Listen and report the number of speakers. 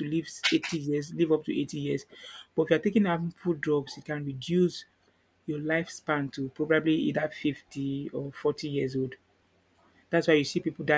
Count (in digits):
1